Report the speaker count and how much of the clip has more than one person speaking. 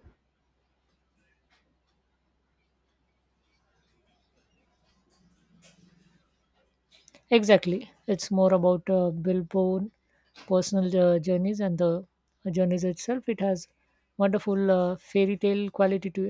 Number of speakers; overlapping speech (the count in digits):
1, no overlap